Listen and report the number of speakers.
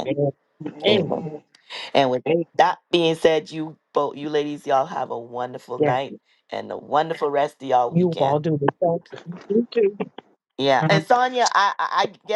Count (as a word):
three